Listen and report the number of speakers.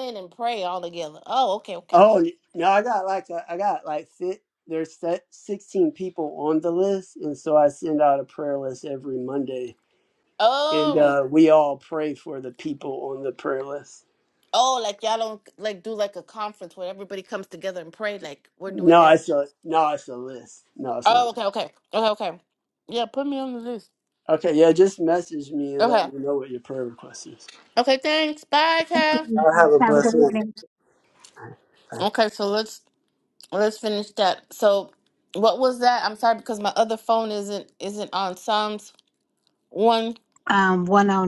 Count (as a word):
three